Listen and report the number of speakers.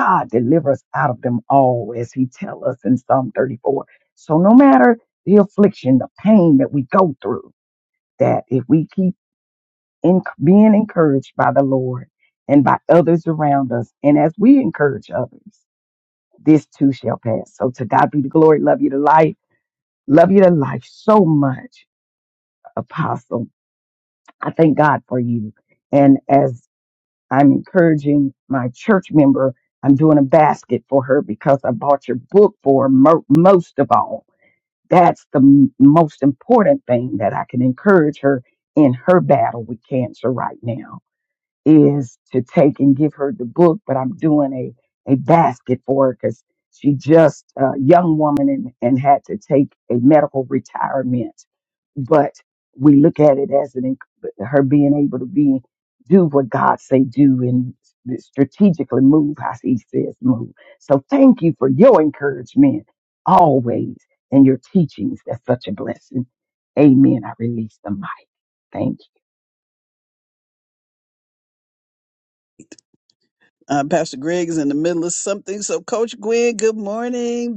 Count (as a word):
two